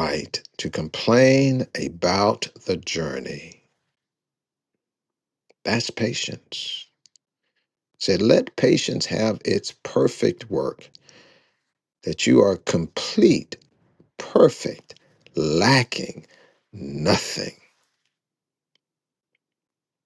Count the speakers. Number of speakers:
1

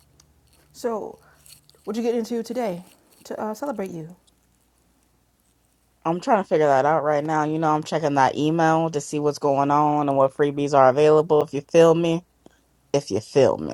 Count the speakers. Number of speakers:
2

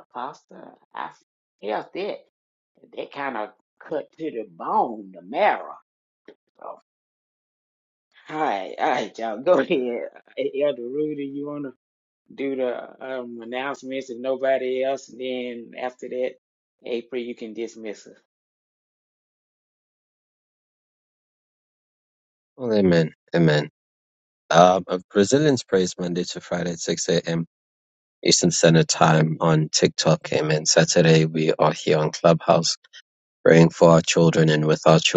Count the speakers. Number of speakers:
2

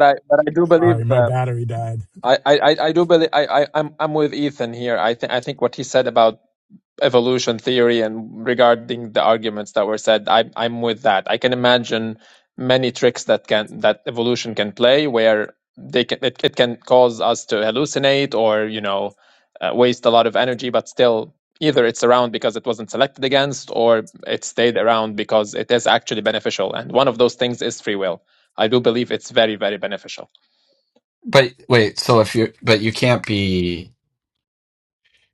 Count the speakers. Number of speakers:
3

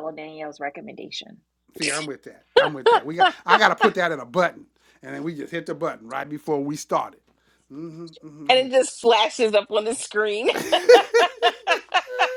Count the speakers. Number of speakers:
3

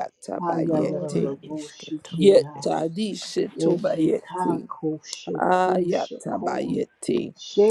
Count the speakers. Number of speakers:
3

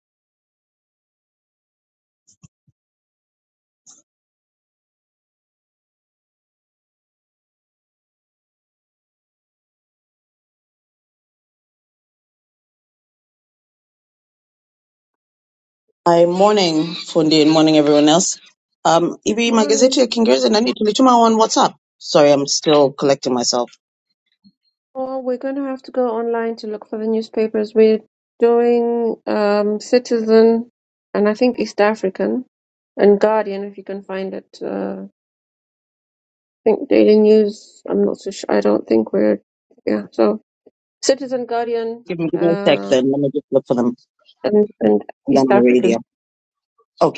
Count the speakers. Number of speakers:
2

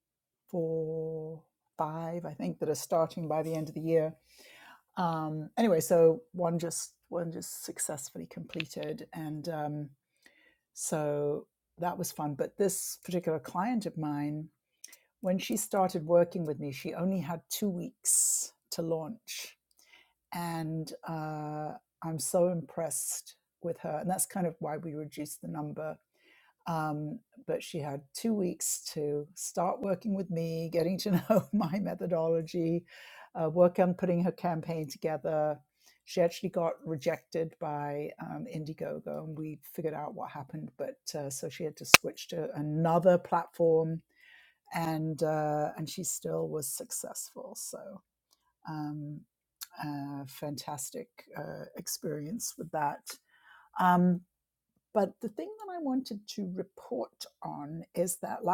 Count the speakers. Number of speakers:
1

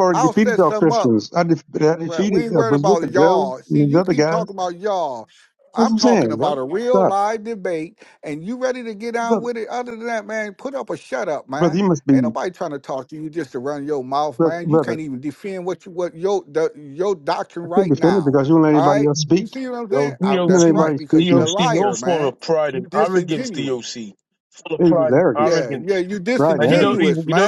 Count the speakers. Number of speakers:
3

